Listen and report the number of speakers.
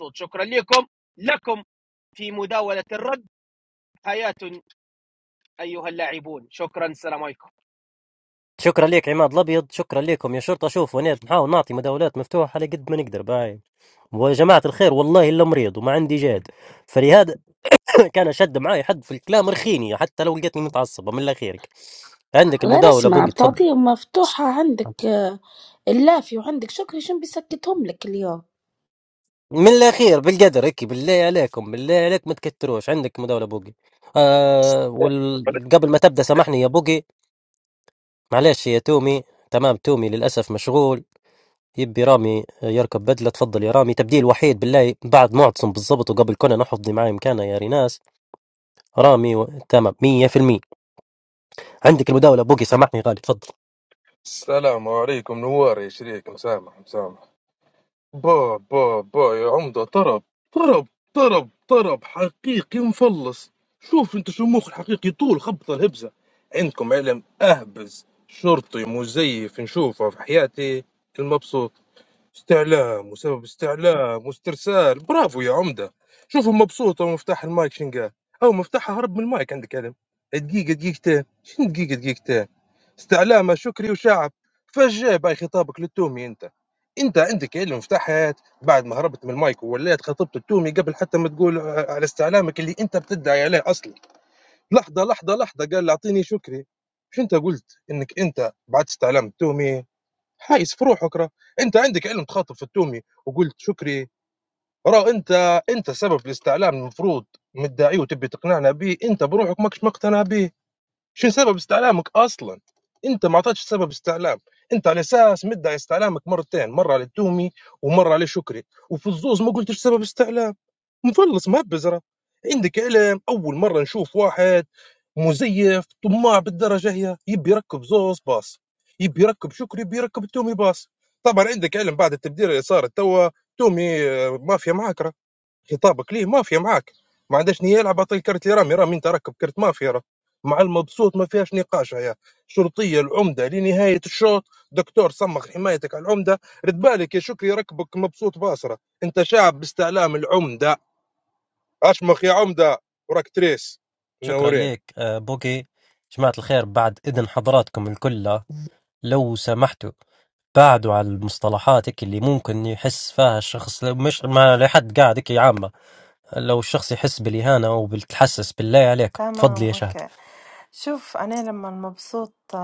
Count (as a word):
five